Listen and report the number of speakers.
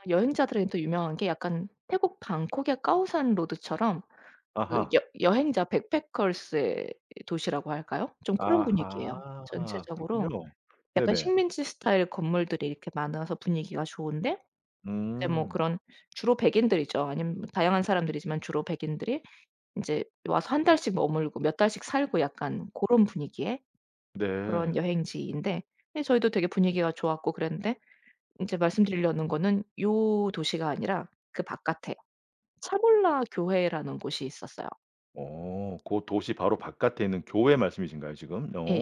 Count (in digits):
2